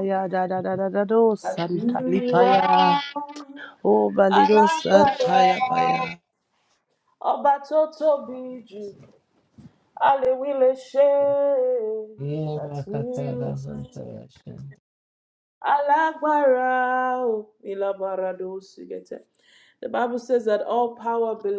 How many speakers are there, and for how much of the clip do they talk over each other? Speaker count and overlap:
three, about 22%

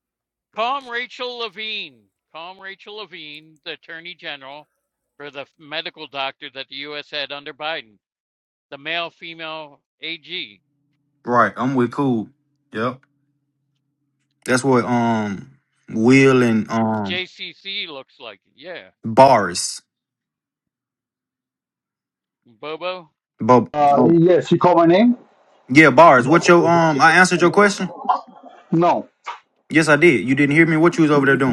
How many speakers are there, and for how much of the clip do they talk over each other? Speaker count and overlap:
three, under 1%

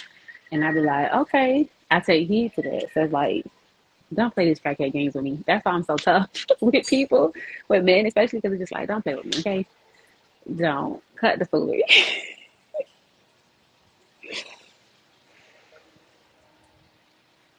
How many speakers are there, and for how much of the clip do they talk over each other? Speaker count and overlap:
one, no overlap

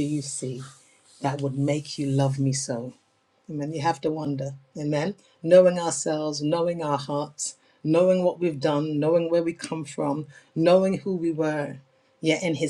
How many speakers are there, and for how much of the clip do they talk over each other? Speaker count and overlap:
one, no overlap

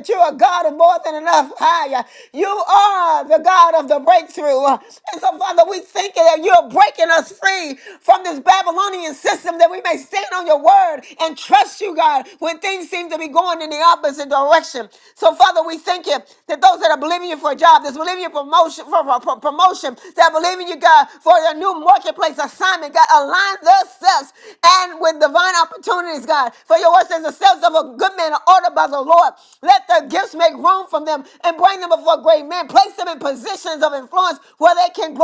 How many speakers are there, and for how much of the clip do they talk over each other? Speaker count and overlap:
one, no overlap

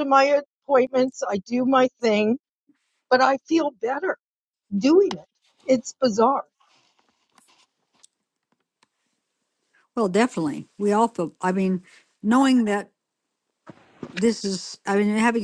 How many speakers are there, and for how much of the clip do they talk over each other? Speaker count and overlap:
two, no overlap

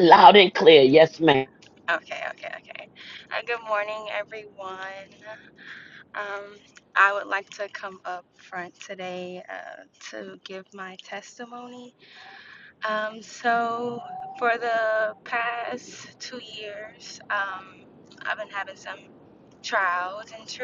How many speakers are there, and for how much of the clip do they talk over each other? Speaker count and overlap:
two, no overlap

